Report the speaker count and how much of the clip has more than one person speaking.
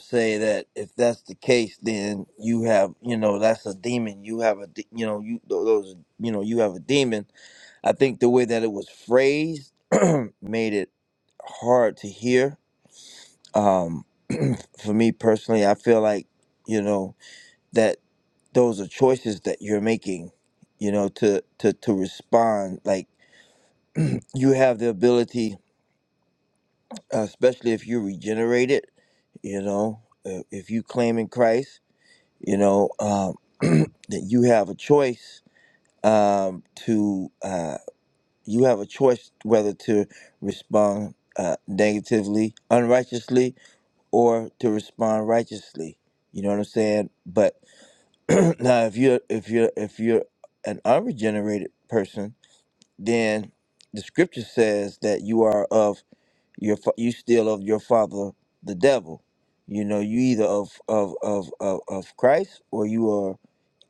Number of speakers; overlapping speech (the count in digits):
1, no overlap